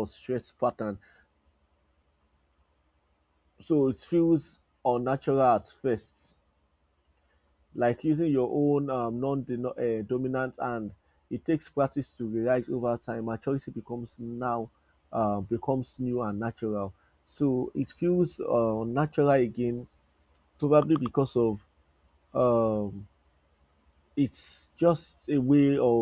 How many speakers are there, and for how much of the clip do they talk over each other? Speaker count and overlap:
1, no overlap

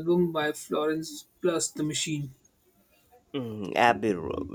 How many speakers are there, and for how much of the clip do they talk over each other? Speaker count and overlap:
2, no overlap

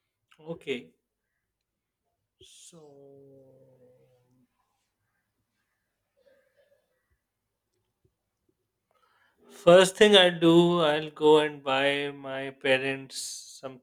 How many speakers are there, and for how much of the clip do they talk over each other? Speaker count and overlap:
1, no overlap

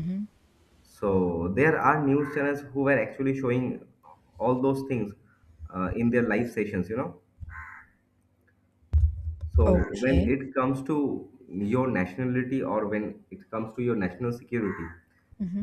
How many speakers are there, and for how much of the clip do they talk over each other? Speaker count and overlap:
2, about 5%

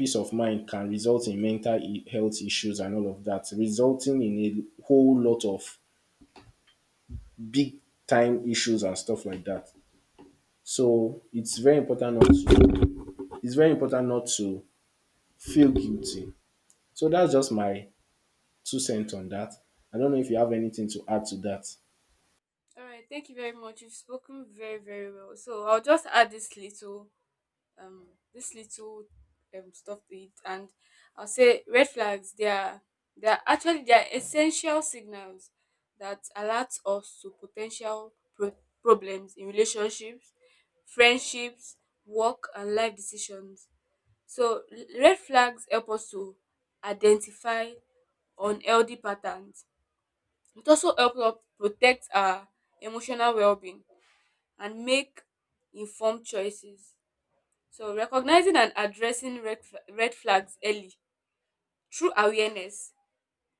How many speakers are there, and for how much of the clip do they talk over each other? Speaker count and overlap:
2, no overlap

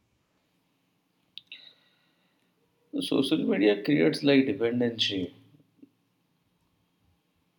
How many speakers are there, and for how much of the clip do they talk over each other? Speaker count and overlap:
1, no overlap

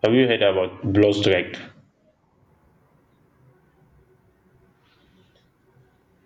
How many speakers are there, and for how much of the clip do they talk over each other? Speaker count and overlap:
1, no overlap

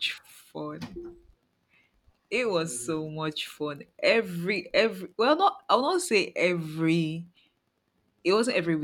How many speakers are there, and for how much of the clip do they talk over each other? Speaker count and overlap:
1, no overlap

